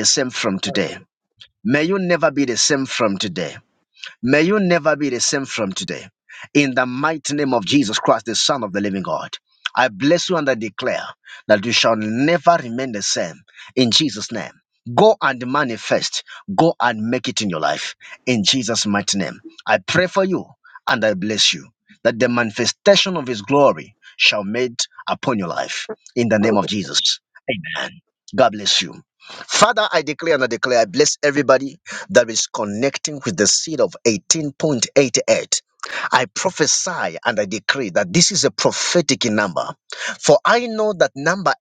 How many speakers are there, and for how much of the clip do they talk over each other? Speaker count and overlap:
one, no overlap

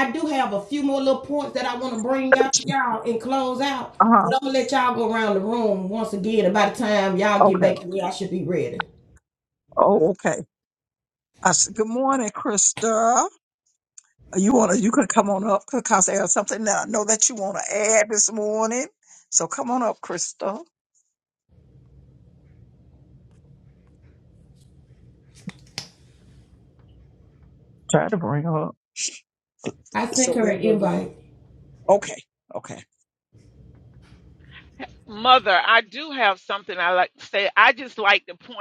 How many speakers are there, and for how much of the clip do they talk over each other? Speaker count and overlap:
three, about 4%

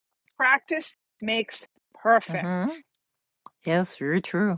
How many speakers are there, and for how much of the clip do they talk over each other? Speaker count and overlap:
two, about 3%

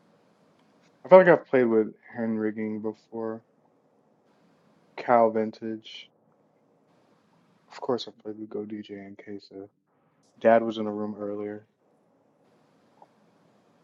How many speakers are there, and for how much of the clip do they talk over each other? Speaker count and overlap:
one, no overlap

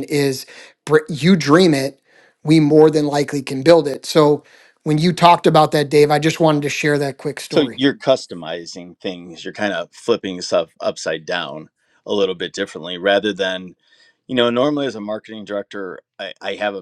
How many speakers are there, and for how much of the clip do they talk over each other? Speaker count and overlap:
two, about 1%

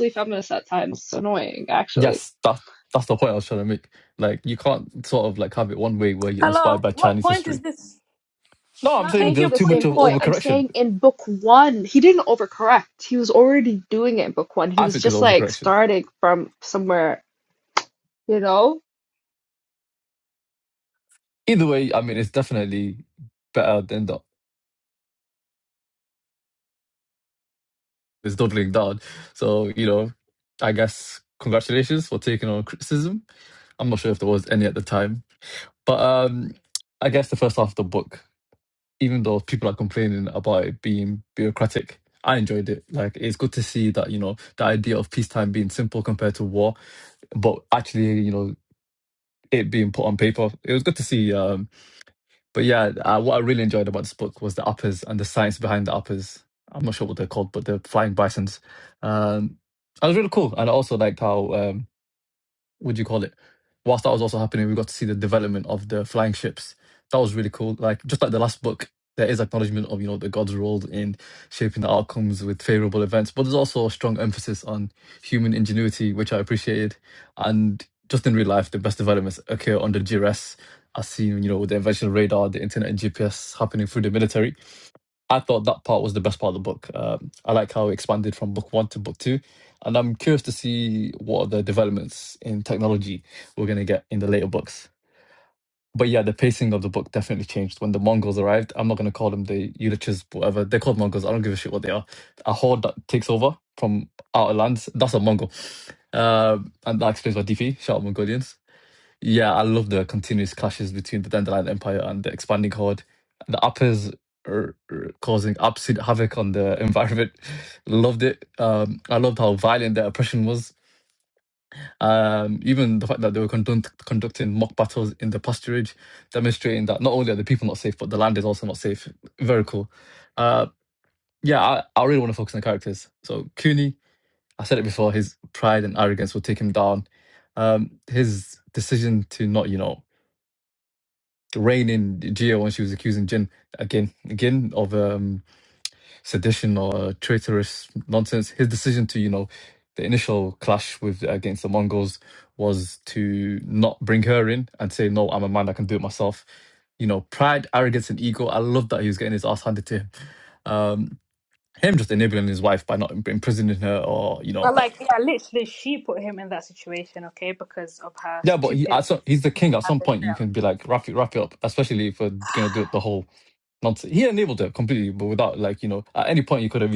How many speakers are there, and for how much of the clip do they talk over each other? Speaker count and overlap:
three, about 3%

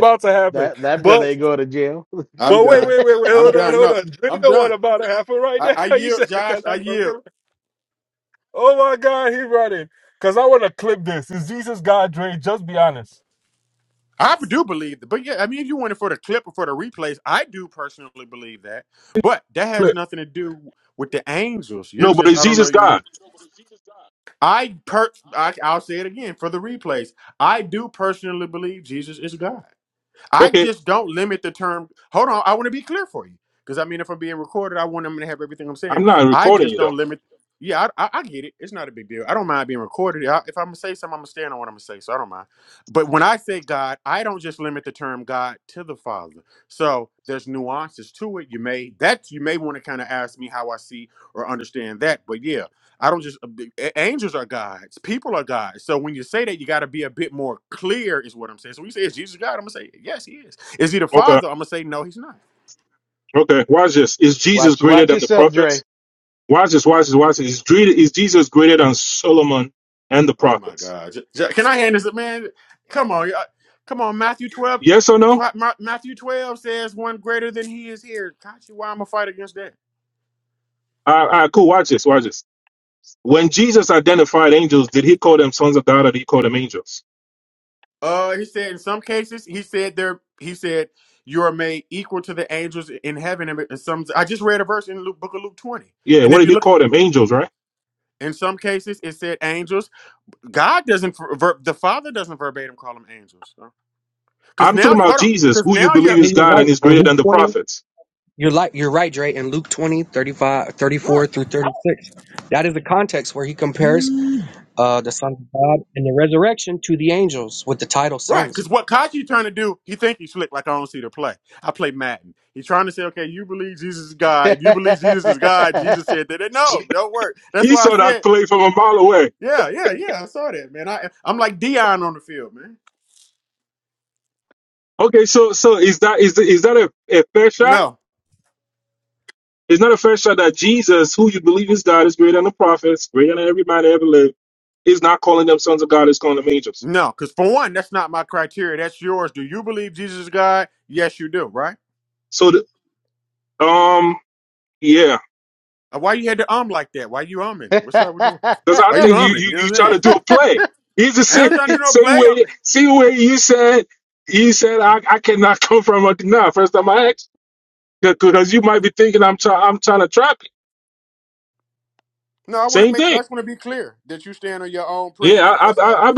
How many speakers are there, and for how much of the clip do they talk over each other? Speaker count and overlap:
four, about 9%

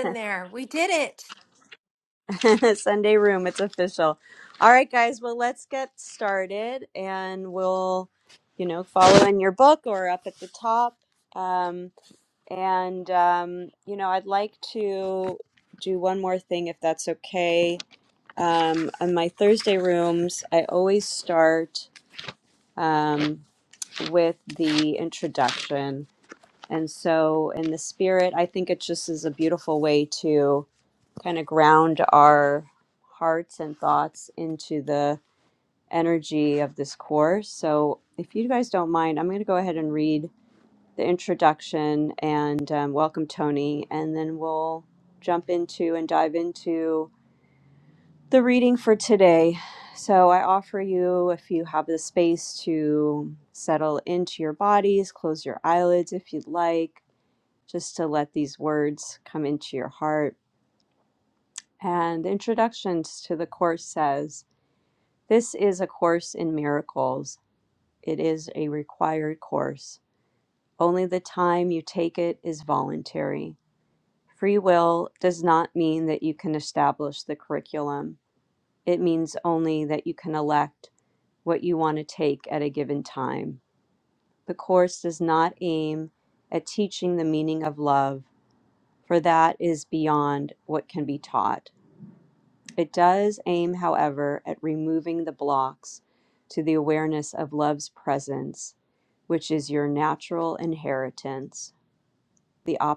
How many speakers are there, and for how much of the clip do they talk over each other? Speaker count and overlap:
two, no overlap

